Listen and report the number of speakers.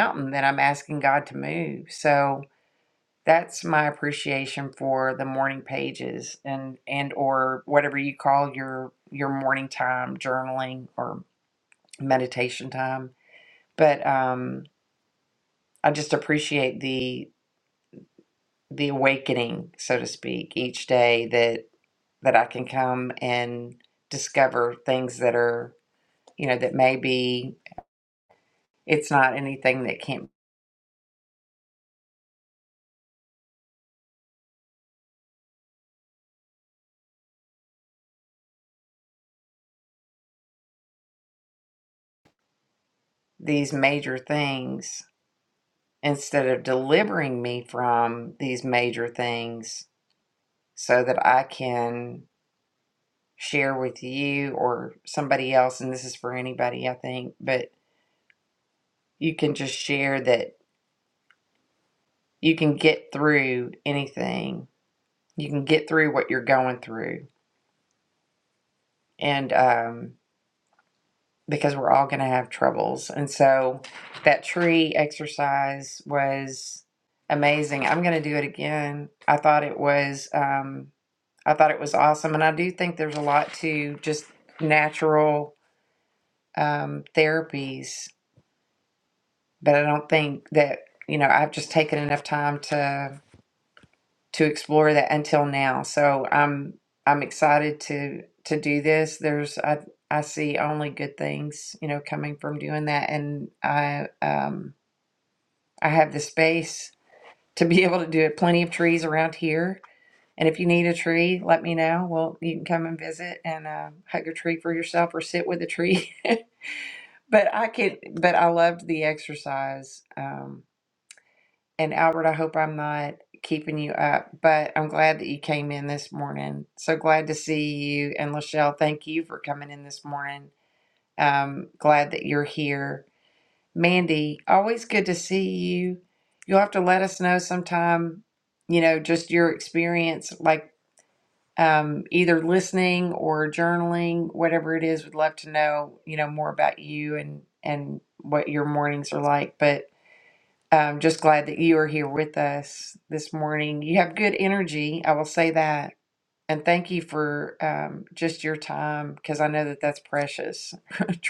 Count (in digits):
1